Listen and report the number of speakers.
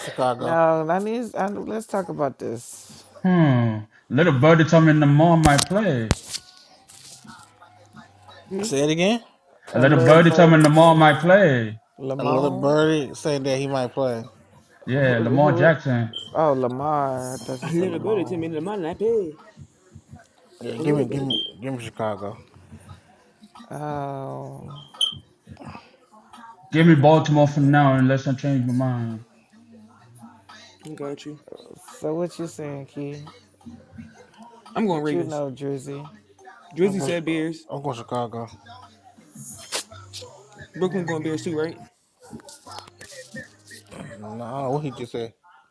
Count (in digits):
4